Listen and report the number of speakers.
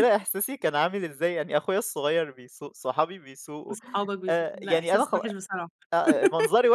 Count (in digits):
2